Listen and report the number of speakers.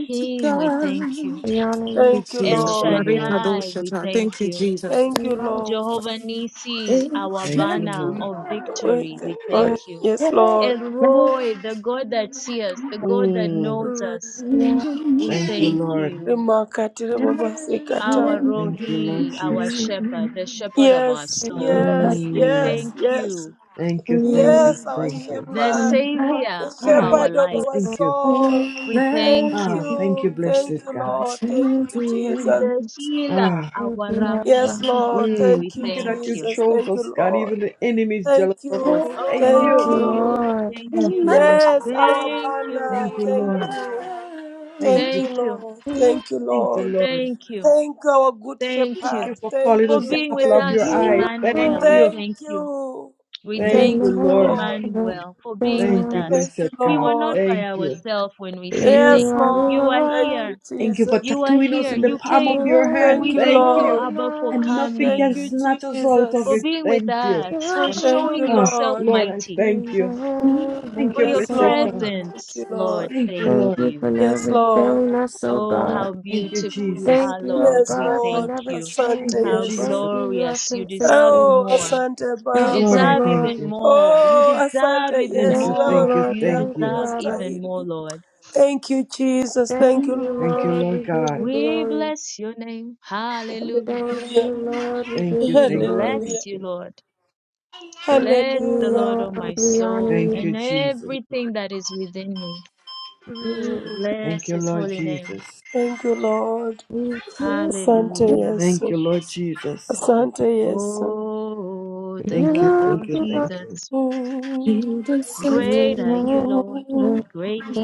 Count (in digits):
5